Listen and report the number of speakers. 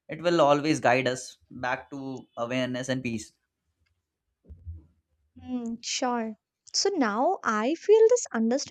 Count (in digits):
2